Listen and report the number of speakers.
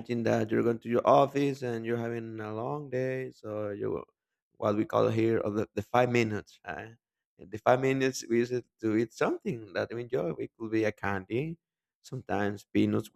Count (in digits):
1